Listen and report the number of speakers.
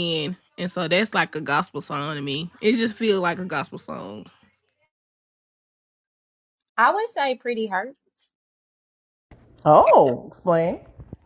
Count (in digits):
3